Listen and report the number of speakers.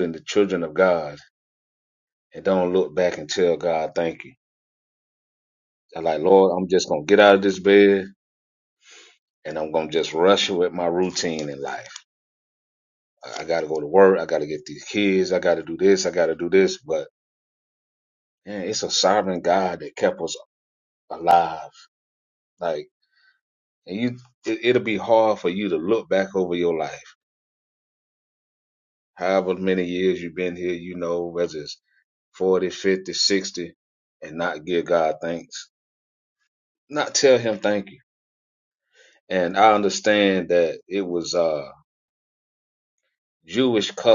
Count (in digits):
1